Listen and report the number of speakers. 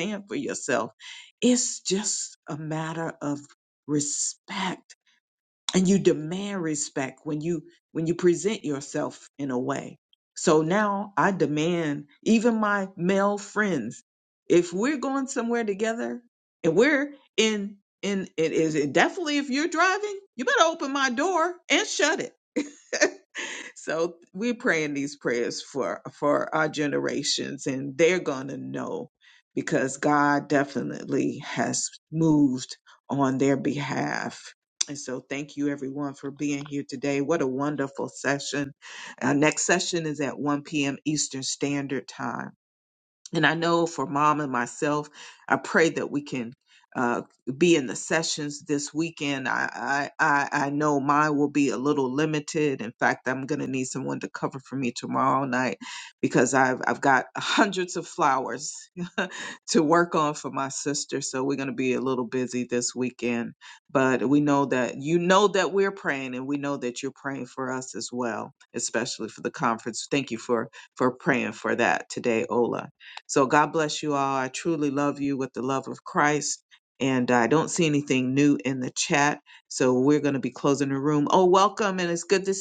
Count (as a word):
one